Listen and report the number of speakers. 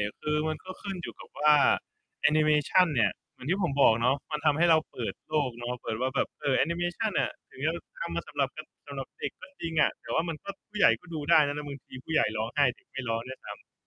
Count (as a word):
one